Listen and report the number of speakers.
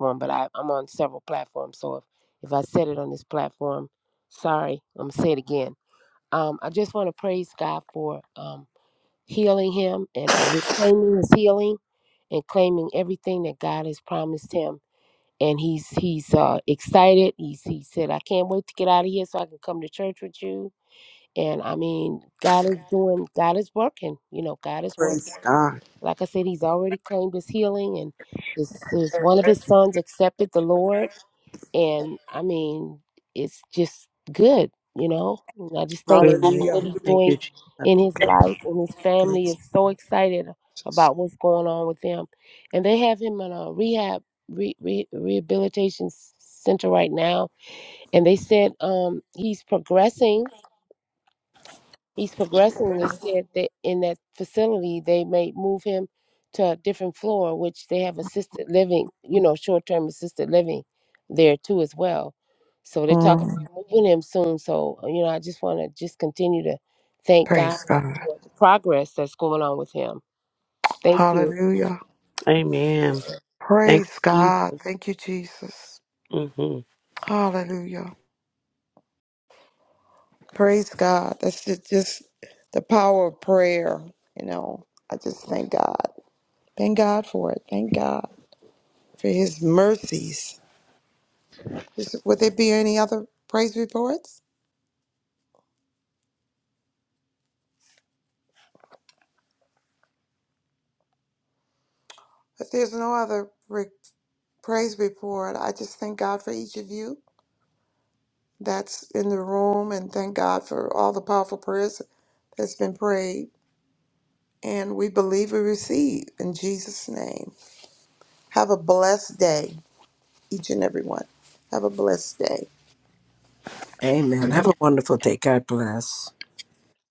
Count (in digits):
4